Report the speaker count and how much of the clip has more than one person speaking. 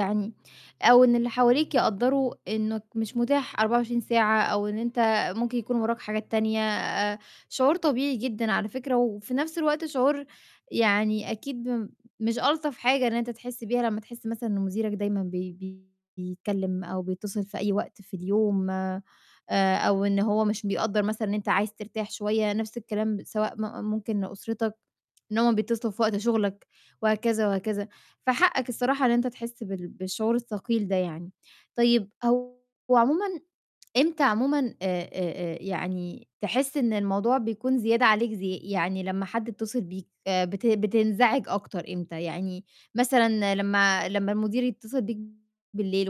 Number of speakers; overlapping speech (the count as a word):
one, no overlap